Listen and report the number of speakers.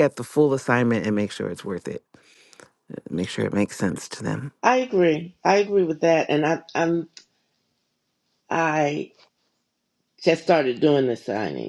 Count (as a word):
two